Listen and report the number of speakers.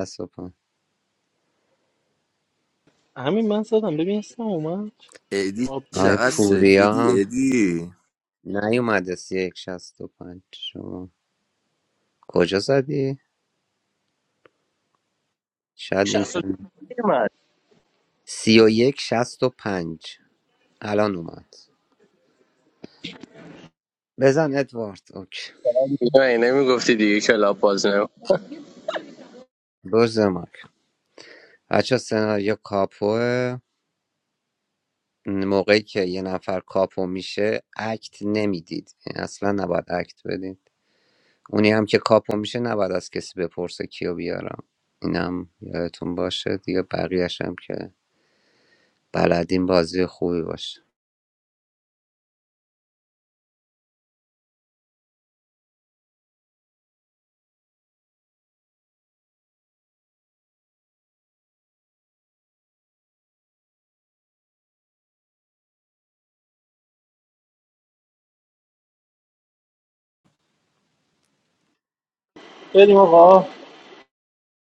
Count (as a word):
four